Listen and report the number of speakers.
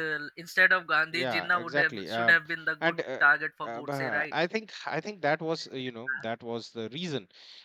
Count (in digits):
2